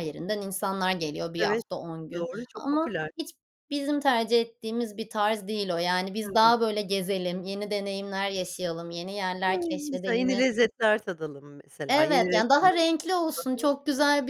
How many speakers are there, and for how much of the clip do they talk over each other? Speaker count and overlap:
2, about 25%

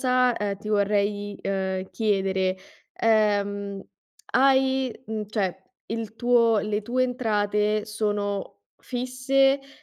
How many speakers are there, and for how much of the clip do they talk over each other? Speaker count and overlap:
1, no overlap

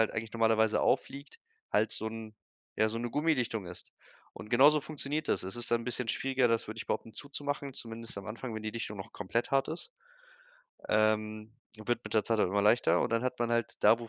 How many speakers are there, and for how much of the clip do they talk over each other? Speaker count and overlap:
1, no overlap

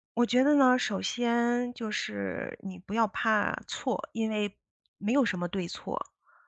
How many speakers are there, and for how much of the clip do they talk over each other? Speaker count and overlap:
1, no overlap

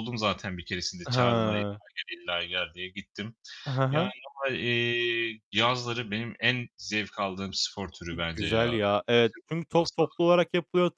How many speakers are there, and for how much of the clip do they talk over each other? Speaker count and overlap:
2, about 16%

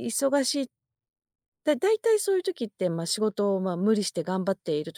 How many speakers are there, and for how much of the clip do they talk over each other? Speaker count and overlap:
1, no overlap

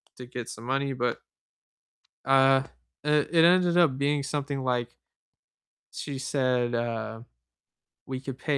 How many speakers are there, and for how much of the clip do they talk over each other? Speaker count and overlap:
1, no overlap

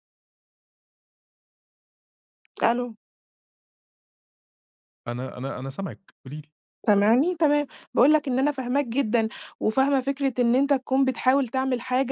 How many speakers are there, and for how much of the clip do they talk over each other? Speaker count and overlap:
2, no overlap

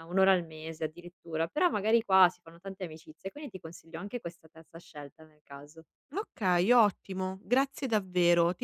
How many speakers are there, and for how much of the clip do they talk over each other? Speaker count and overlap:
2, no overlap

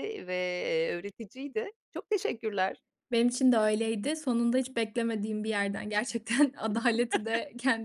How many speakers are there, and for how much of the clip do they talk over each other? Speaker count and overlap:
2, no overlap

